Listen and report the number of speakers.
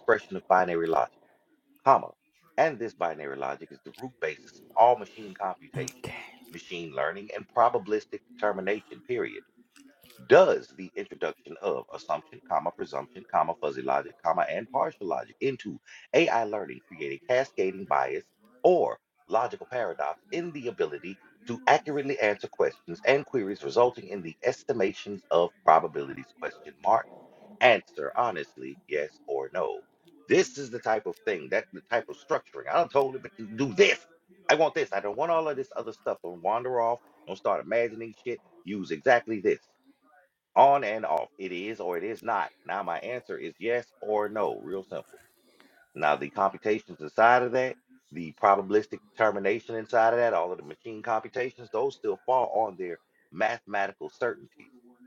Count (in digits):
1